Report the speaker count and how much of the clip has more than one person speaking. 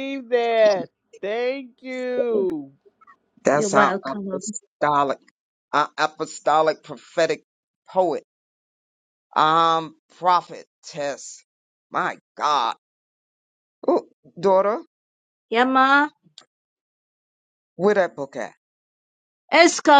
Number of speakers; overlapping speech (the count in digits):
3, about 5%